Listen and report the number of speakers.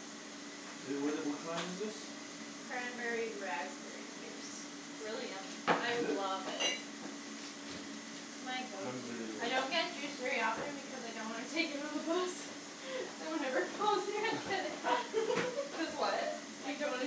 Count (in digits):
3